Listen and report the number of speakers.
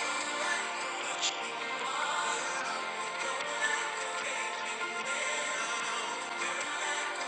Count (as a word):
zero